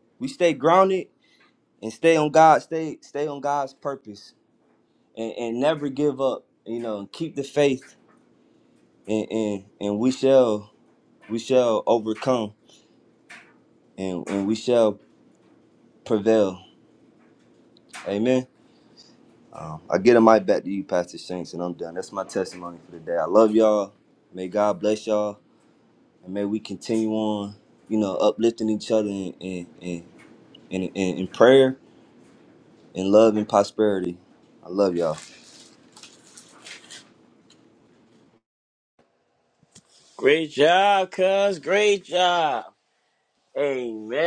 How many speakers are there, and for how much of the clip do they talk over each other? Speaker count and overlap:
2, no overlap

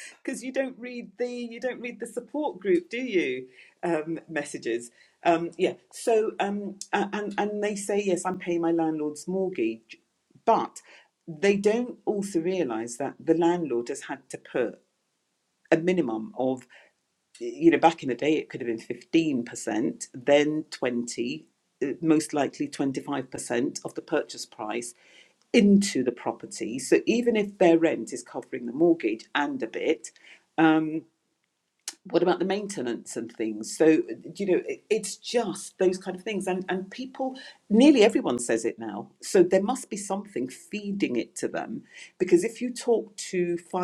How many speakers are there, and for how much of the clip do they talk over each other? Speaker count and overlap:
1, no overlap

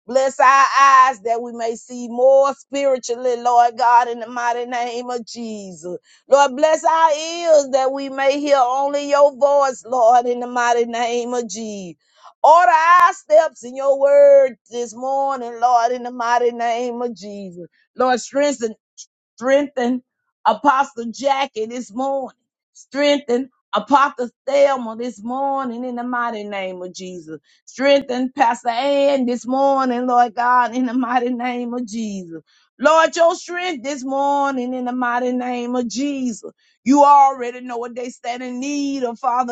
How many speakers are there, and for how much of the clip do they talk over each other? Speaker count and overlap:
1, no overlap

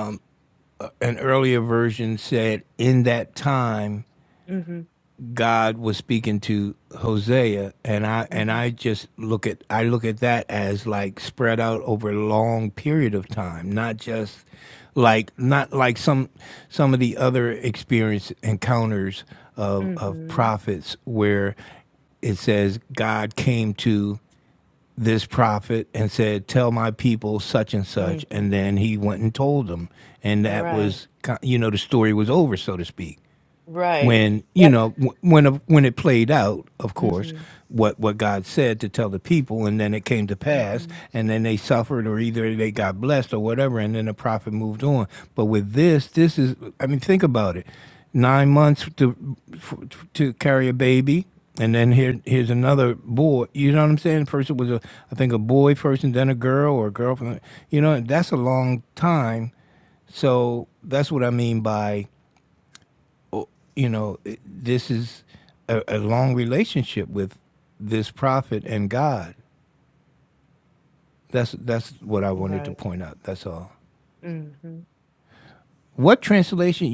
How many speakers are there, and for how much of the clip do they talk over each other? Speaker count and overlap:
2, about 4%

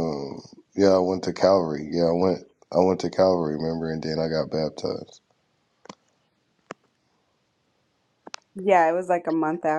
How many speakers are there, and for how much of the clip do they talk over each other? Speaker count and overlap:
2, no overlap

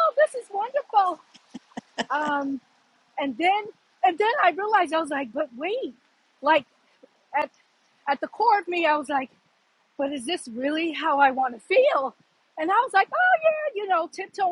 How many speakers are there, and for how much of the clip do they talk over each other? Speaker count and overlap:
1, no overlap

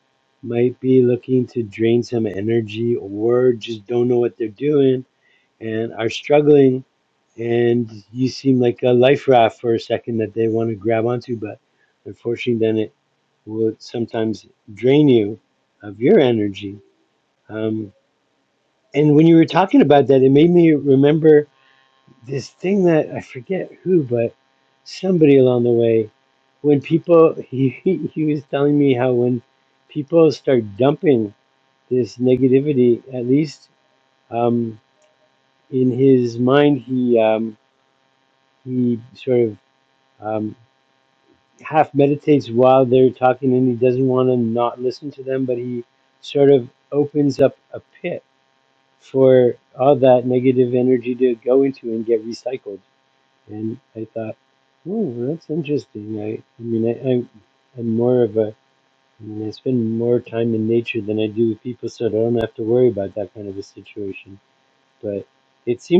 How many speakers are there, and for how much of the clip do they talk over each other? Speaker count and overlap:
1, no overlap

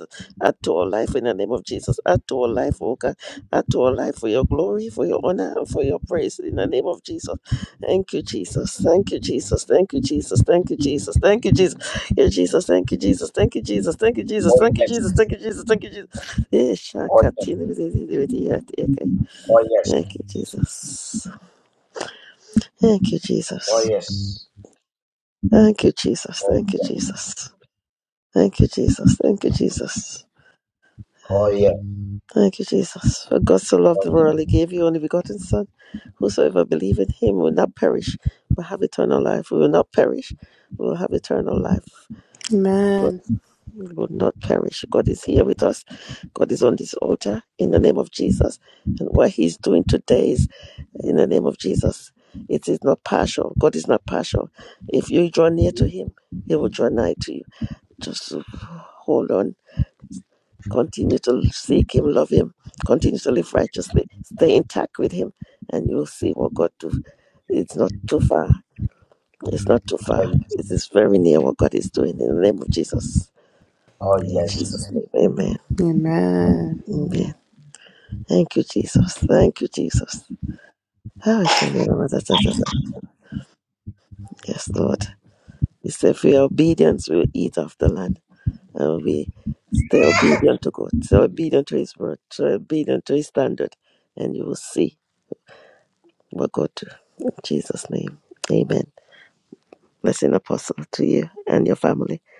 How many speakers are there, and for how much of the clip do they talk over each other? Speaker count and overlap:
3, about 3%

